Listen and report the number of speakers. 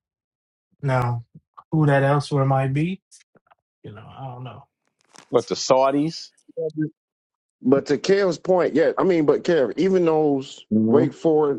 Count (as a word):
three